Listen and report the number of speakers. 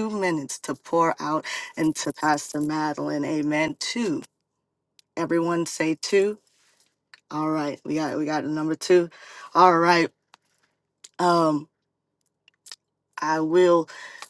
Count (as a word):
one